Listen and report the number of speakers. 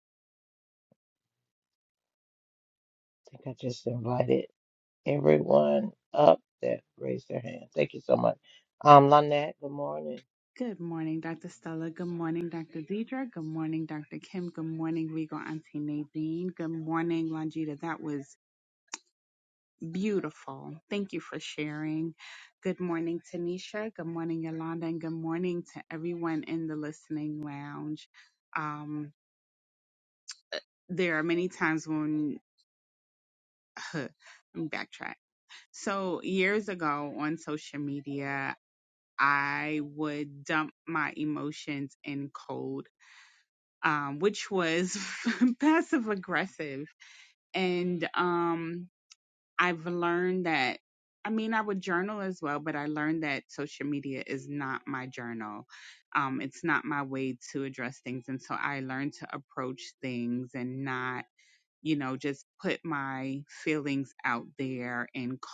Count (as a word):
two